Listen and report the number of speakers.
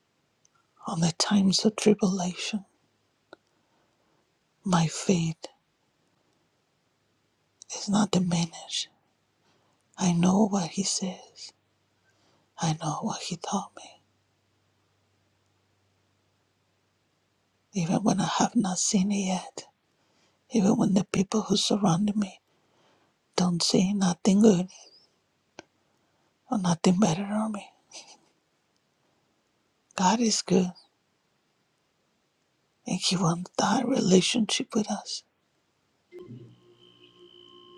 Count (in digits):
1